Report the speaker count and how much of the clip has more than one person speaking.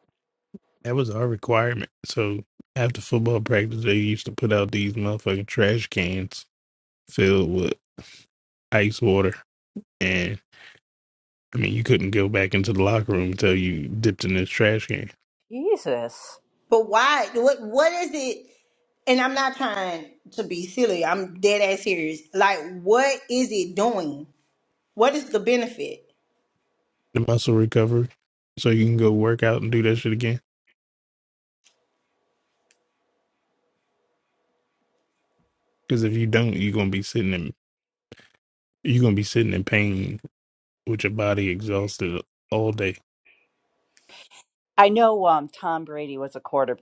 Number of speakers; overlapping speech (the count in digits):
3, no overlap